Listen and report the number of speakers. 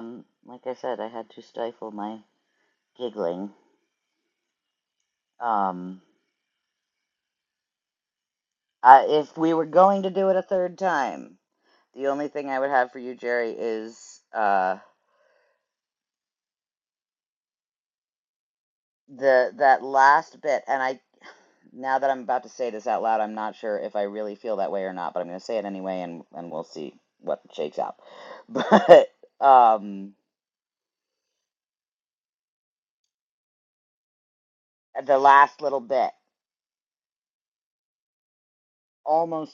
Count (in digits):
1